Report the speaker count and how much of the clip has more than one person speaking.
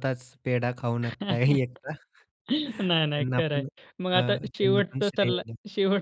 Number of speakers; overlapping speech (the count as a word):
two, about 32%